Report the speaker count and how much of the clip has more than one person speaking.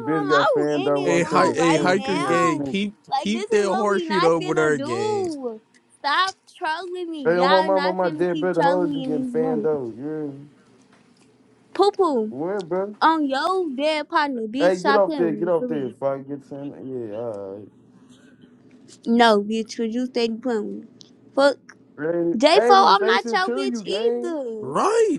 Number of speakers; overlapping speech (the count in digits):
3, about 43%